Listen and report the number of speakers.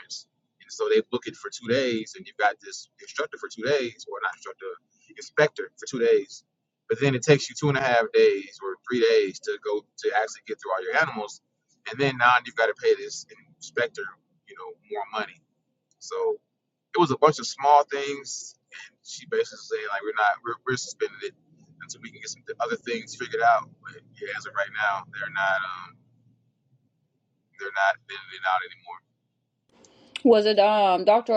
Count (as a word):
two